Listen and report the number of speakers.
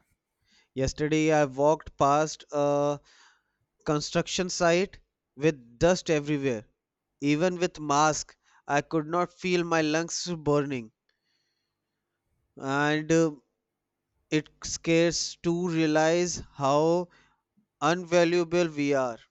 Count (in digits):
1